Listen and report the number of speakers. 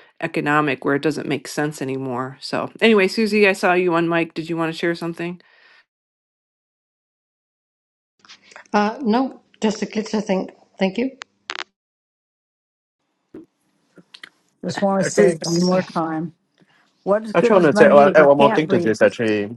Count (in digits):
4